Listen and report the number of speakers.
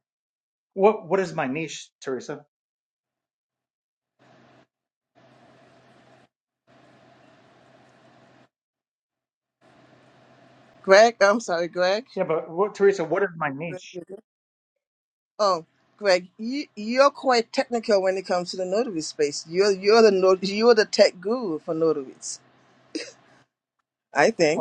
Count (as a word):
two